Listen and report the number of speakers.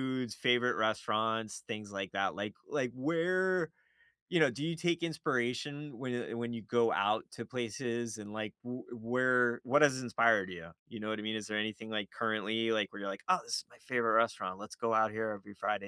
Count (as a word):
one